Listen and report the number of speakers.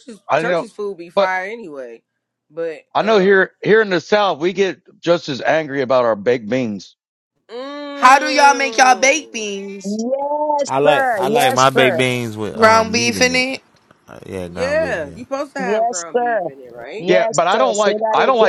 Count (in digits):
5